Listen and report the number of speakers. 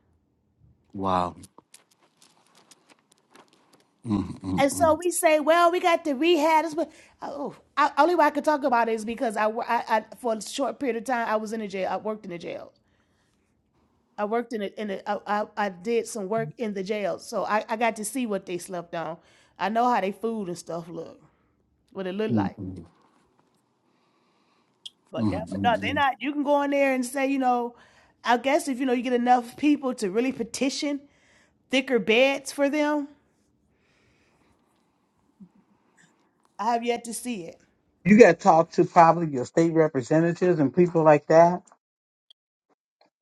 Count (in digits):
3